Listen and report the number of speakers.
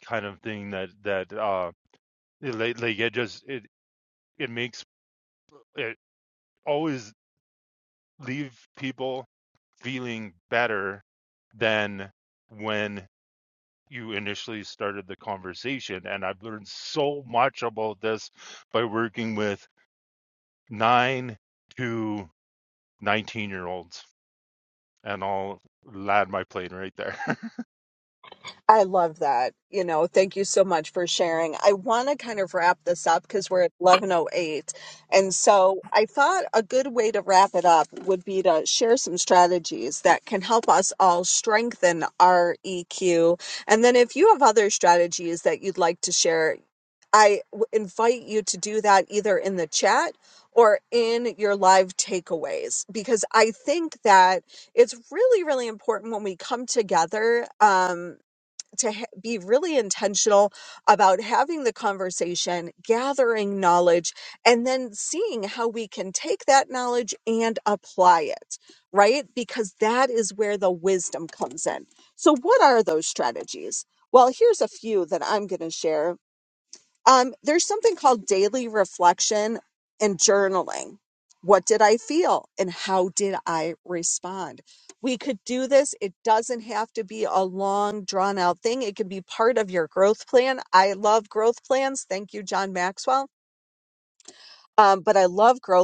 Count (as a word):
two